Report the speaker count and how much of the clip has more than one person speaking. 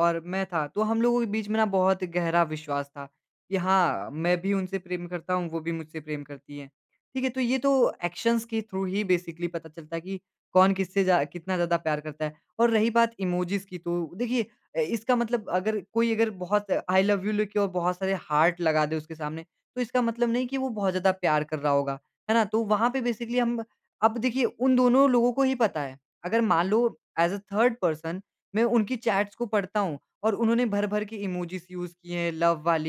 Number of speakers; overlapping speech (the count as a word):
one, no overlap